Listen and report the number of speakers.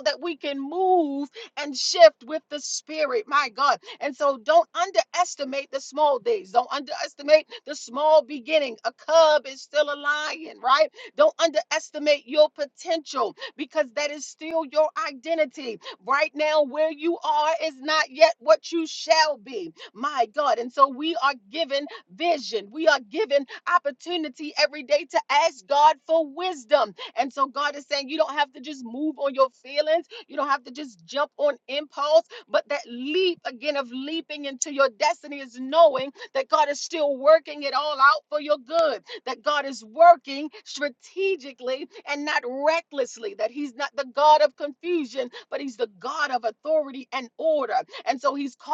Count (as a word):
one